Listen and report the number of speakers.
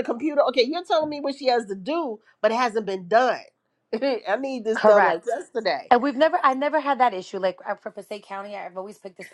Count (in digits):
2